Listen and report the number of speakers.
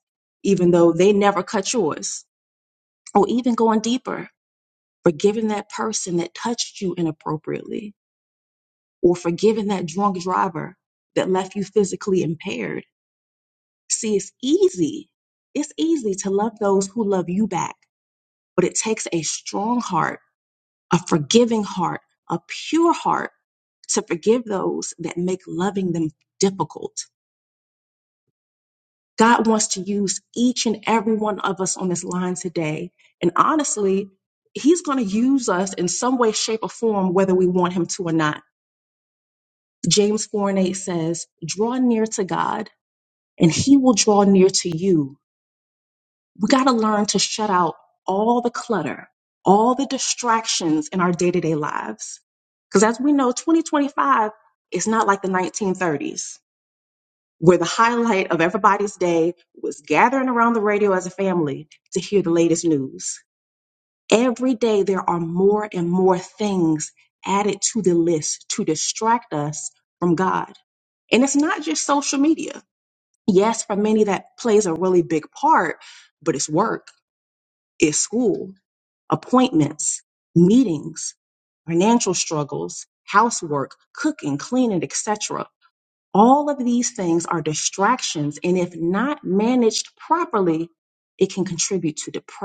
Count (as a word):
one